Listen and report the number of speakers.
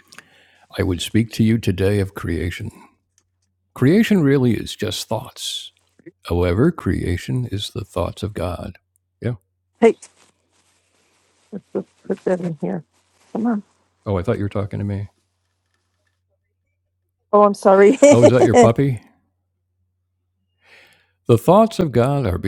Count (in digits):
2